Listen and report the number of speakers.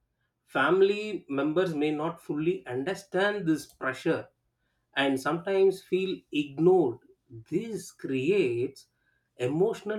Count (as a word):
one